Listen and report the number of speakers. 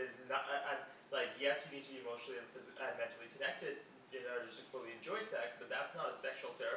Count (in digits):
1